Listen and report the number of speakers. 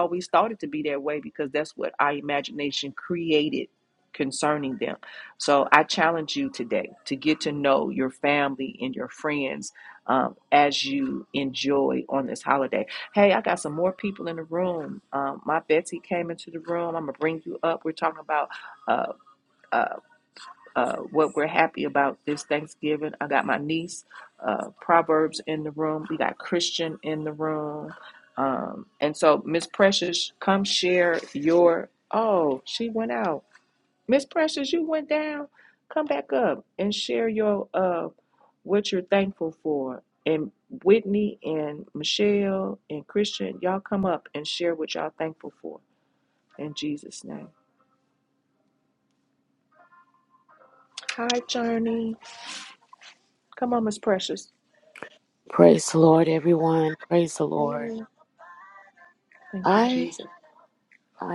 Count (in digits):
2